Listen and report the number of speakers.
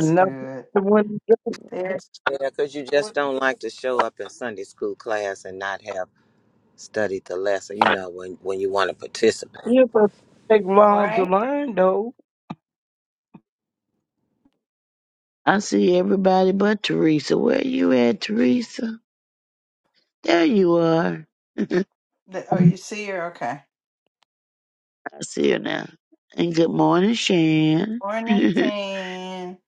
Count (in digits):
4